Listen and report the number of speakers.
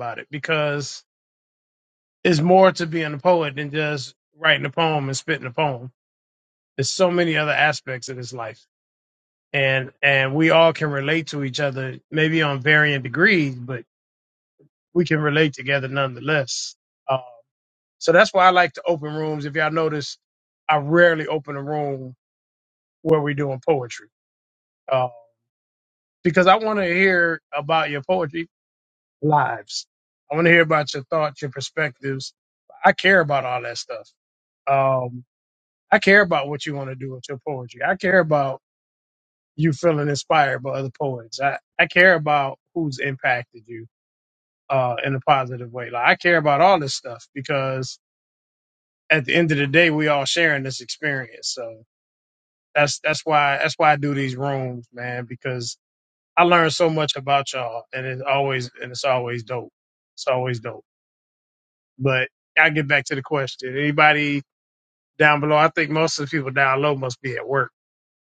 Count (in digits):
1